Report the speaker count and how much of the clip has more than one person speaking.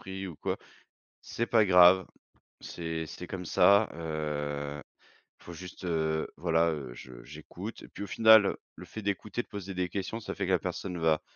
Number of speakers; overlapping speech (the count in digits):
1, no overlap